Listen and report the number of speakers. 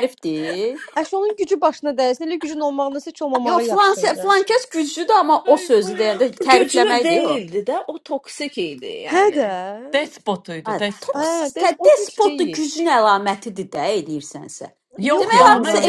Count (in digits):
4